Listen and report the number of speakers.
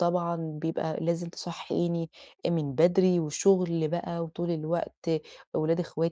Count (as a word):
one